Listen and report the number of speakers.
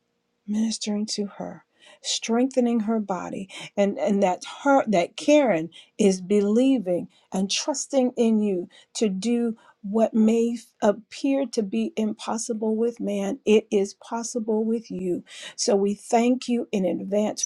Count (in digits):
1